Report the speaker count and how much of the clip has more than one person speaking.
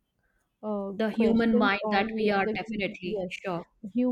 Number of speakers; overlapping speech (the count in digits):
2, about 43%